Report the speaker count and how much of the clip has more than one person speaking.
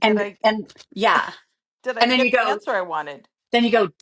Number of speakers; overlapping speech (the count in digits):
2, about 22%